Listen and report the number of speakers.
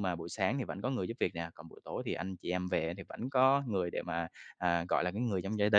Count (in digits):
1